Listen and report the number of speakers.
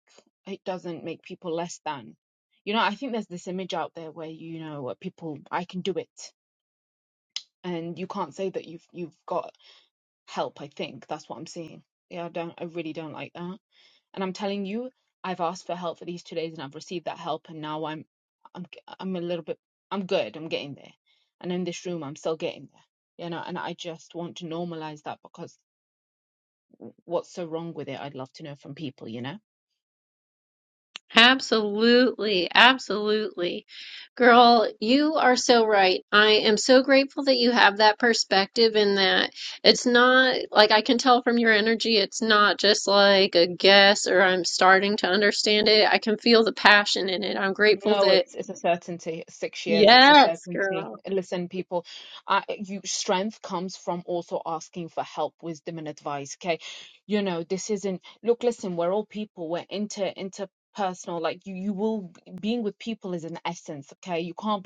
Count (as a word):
two